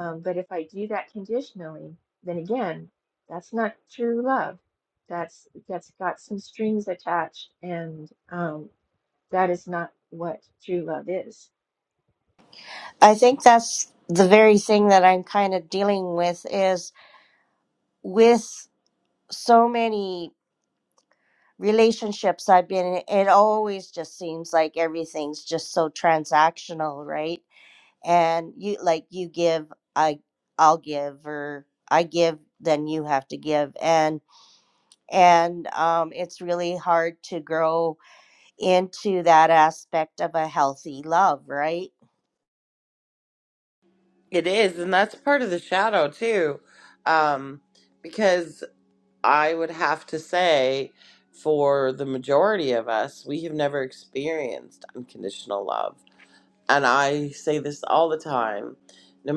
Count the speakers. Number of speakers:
three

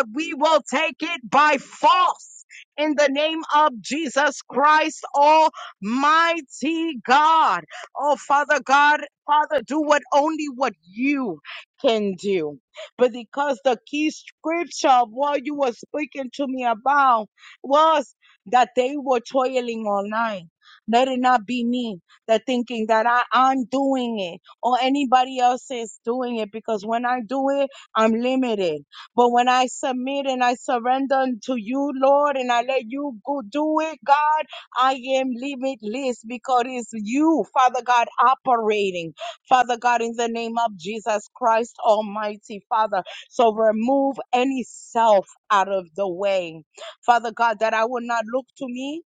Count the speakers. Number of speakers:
one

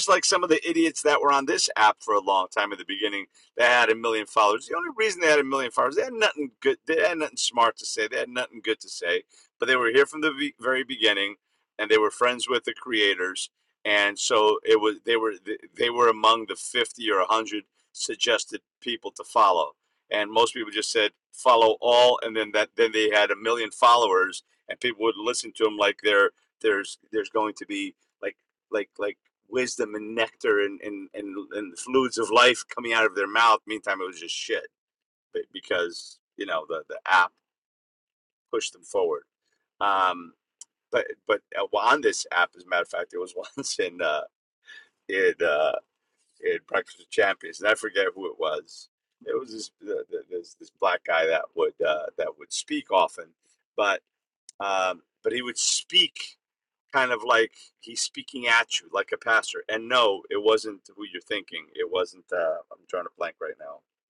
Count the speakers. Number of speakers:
one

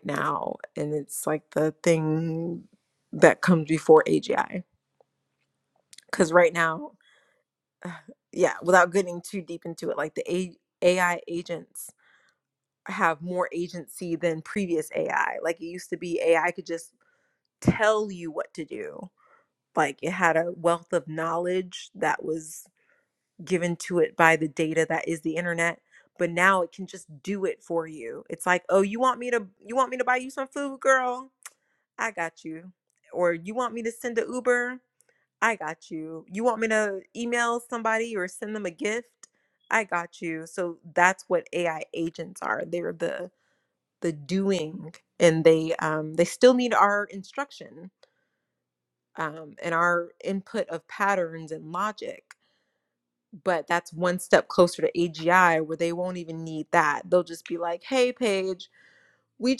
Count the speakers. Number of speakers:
one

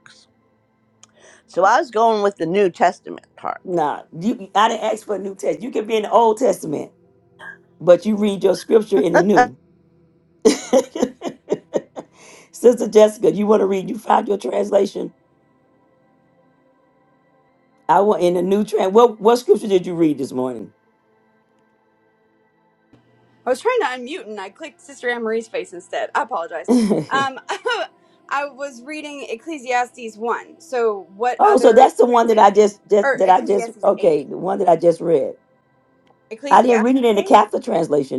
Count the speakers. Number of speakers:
three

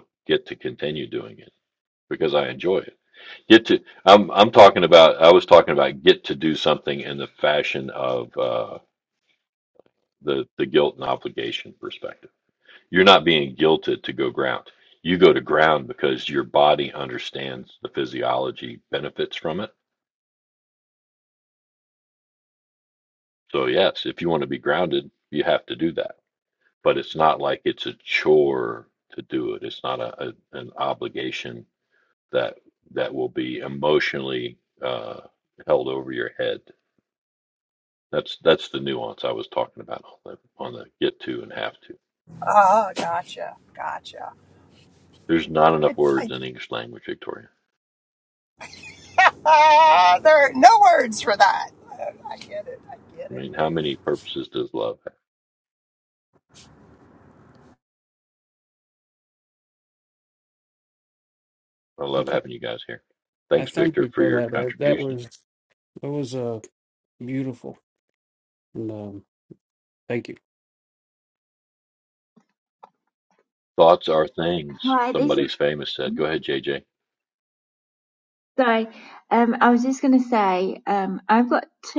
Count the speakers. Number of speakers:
four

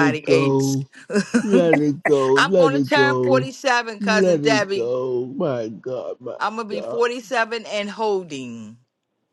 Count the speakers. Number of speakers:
two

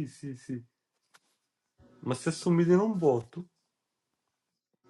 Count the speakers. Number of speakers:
one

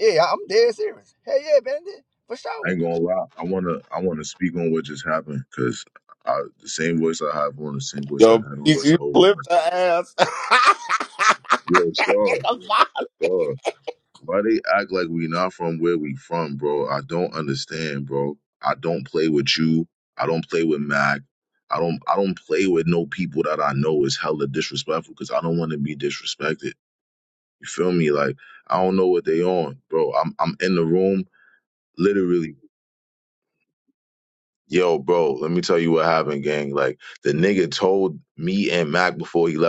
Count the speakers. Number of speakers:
three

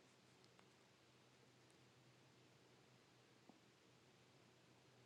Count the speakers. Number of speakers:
zero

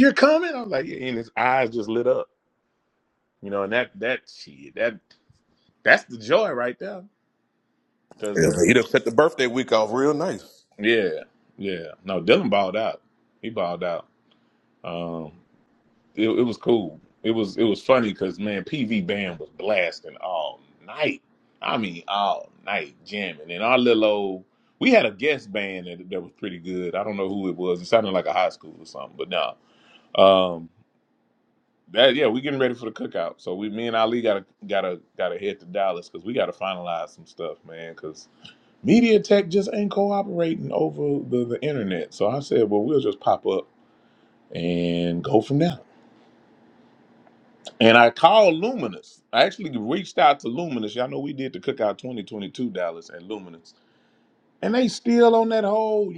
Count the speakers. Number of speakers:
two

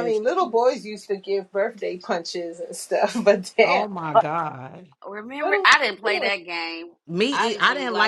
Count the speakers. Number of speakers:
three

